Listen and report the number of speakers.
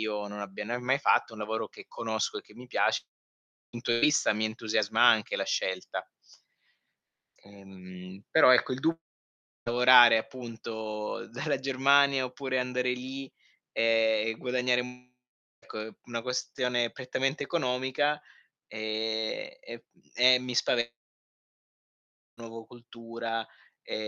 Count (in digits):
1